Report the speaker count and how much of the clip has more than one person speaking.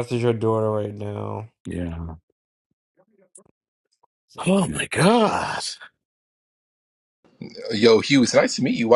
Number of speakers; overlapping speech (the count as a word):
three, no overlap